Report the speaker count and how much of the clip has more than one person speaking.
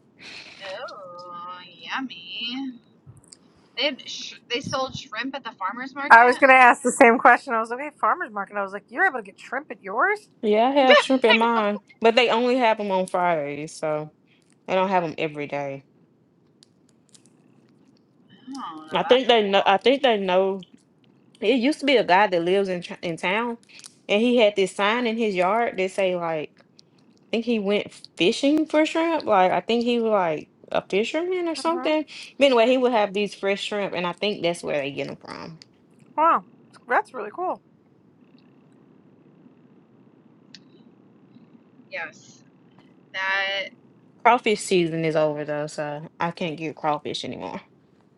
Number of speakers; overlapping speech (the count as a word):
three, about 3%